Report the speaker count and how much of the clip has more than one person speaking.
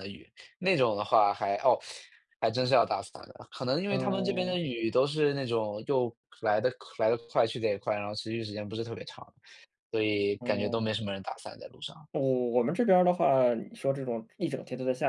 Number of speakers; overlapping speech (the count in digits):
2, about 7%